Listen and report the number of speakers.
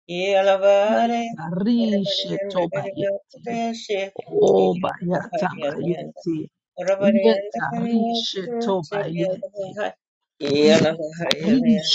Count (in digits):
2